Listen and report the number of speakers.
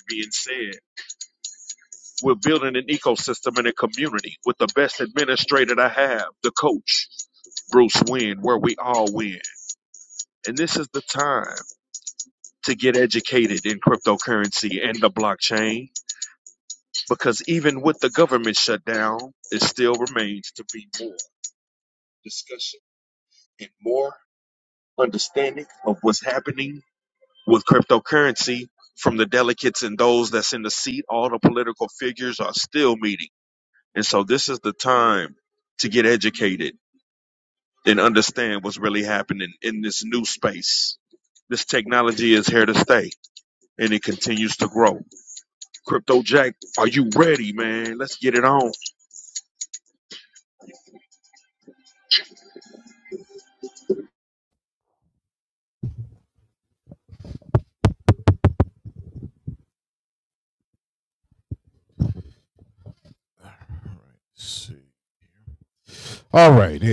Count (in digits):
2